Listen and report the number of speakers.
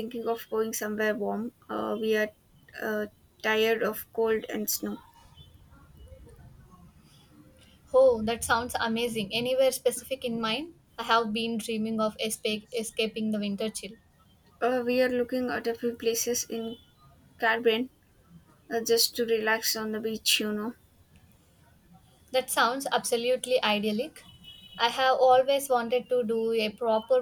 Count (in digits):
2